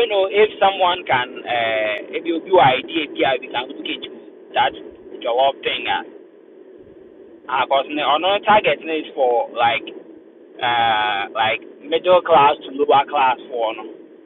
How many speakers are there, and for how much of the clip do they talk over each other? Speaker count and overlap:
1, no overlap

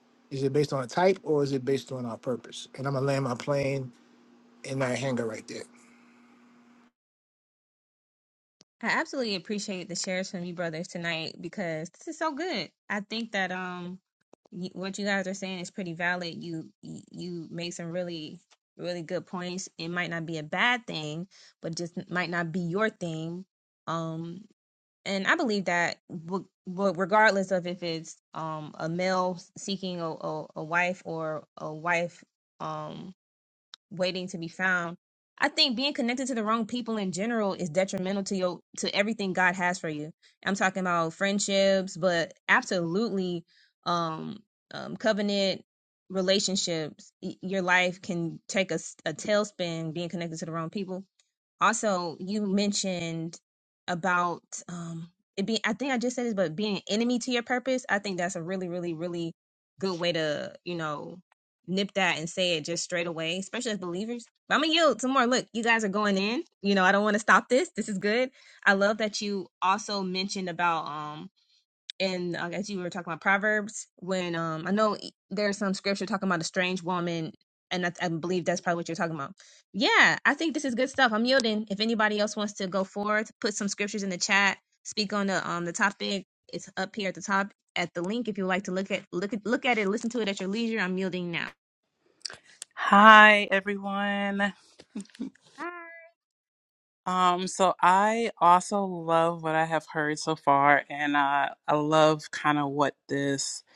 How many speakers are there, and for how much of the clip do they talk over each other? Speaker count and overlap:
3, no overlap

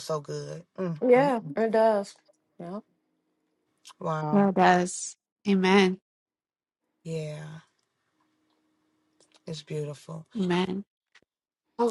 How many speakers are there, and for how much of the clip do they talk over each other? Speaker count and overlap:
3, about 3%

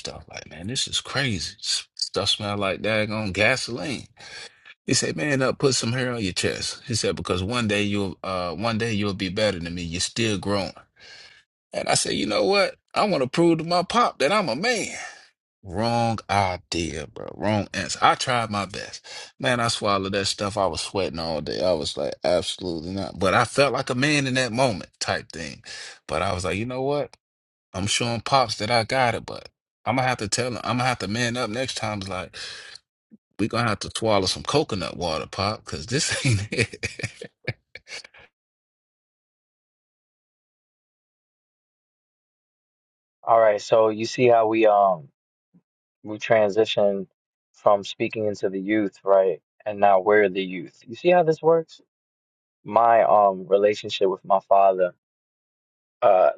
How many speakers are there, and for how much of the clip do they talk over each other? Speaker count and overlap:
2, no overlap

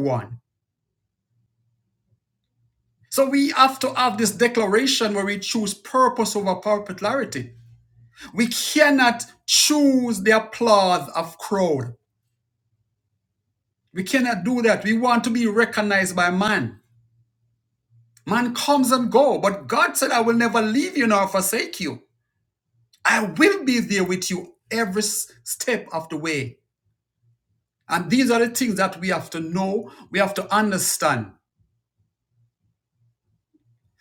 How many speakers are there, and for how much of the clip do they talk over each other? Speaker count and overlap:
1, no overlap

